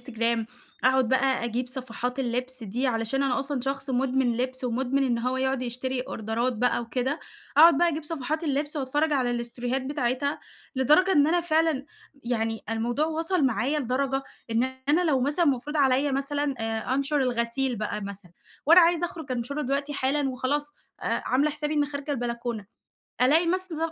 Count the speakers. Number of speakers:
1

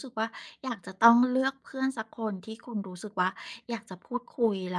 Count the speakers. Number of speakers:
1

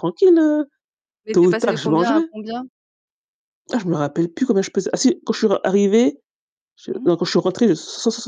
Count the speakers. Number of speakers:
2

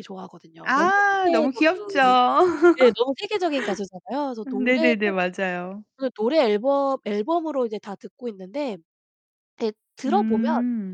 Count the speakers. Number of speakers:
2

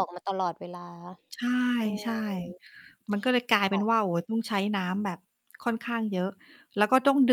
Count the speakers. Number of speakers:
2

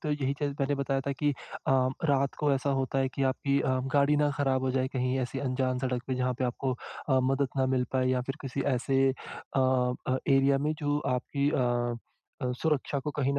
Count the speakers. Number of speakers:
1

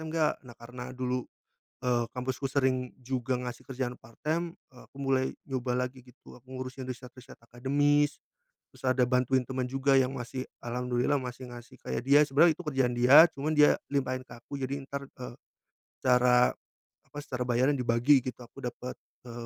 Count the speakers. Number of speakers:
1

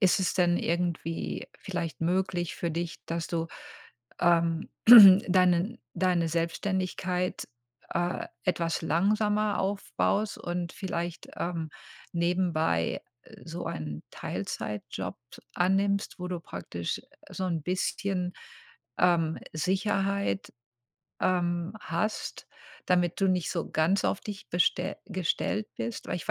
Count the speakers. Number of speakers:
1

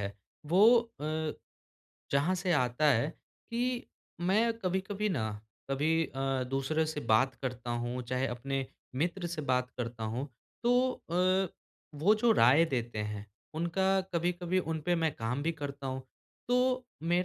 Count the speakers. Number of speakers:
1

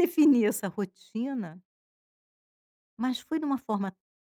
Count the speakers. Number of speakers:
1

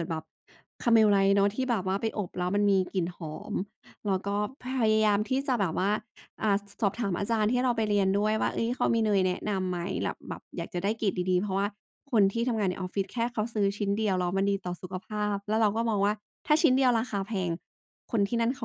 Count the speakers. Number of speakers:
1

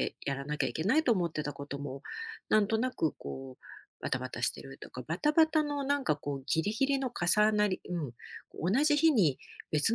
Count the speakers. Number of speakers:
1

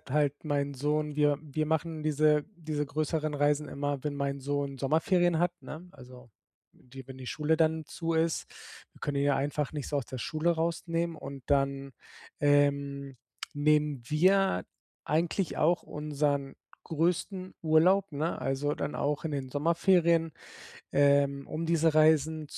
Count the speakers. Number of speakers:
1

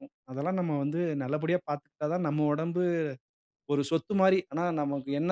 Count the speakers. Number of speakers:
1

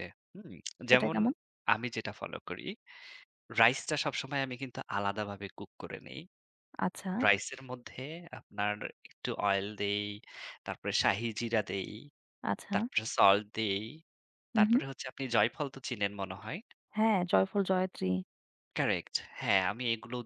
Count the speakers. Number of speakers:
2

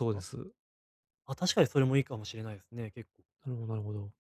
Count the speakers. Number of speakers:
2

